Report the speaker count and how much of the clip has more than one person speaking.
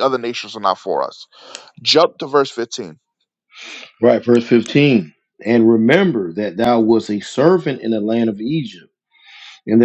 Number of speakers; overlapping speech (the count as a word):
two, no overlap